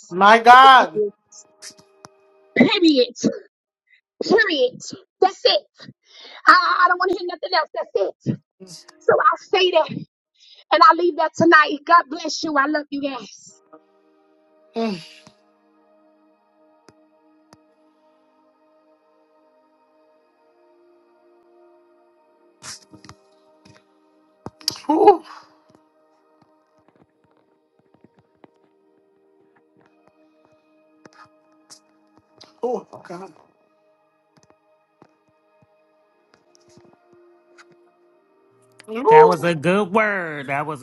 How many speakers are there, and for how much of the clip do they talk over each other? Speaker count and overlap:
3, about 1%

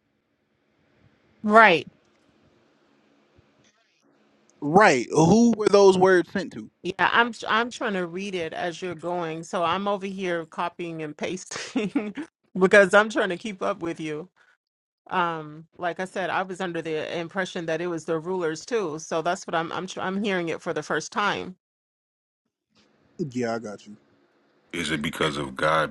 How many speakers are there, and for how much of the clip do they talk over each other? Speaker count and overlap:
3, no overlap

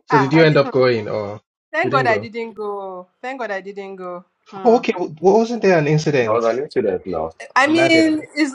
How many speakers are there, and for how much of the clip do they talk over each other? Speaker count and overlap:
3, about 23%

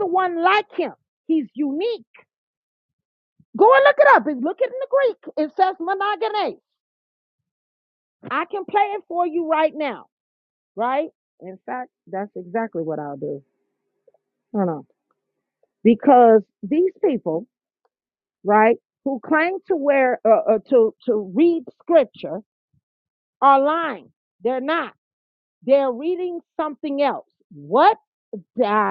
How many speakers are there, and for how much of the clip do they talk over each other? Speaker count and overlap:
1, no overlap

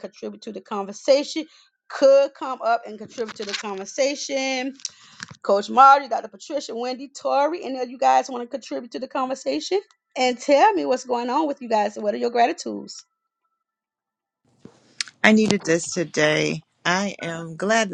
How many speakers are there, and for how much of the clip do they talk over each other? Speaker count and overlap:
2, no overlap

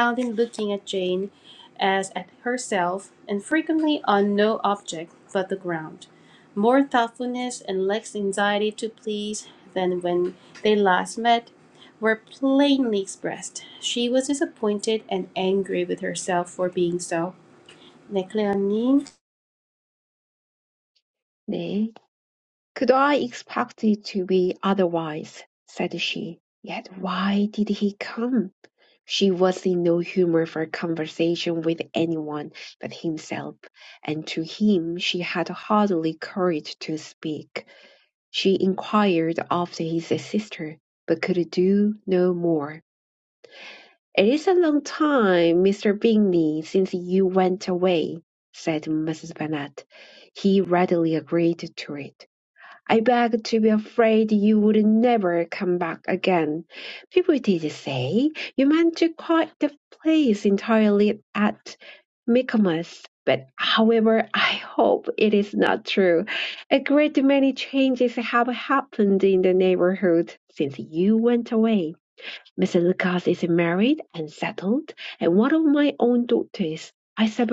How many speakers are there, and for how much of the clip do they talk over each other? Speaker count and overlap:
2, no overlap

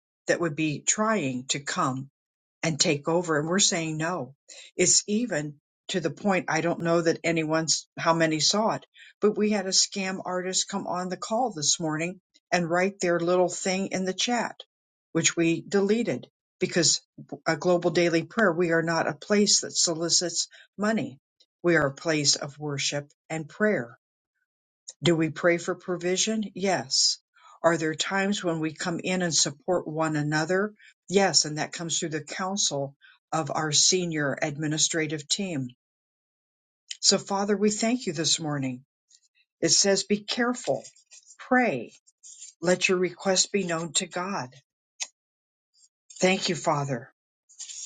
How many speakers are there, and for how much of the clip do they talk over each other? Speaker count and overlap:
1, no overlap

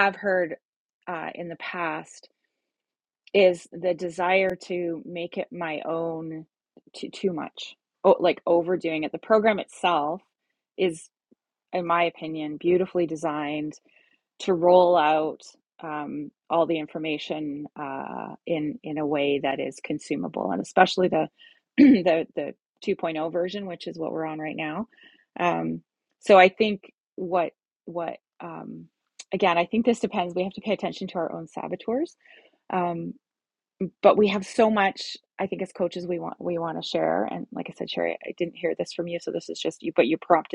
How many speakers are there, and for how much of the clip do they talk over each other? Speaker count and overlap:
1, no overlap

